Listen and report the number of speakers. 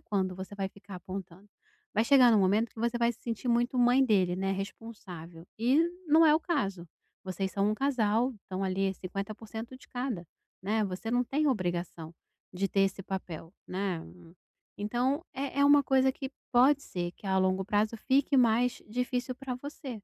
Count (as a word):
one